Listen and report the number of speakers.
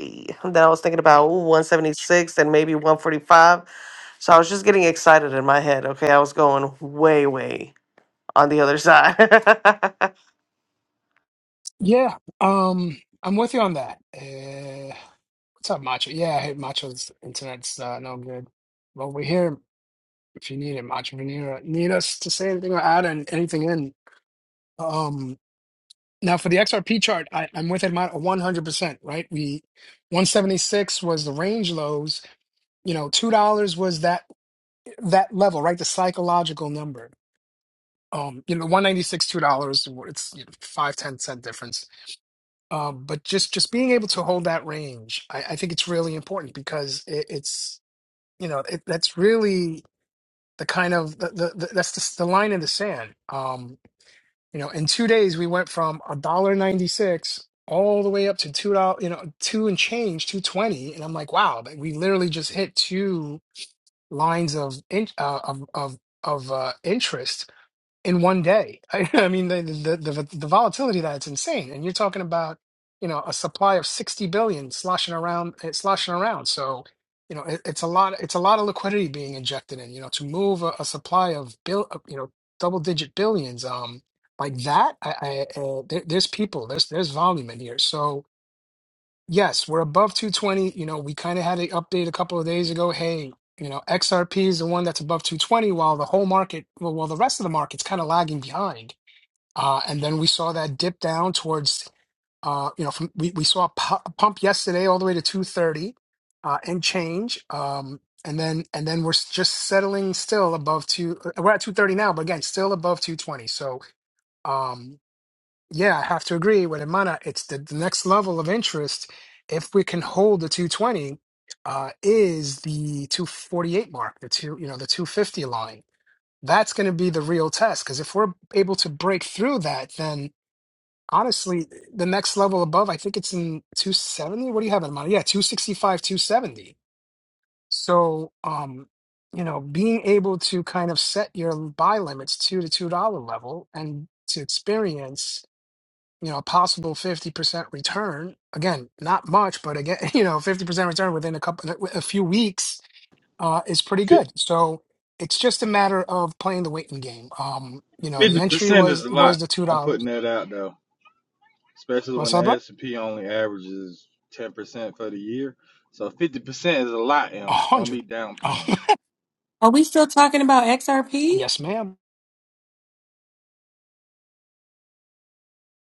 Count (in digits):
4